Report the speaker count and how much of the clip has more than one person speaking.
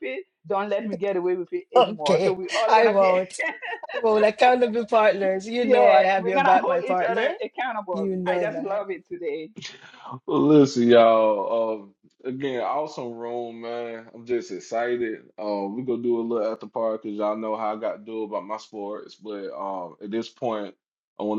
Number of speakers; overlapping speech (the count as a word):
three, about 19%